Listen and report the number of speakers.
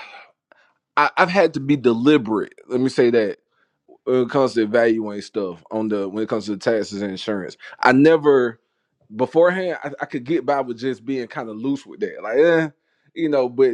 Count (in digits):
1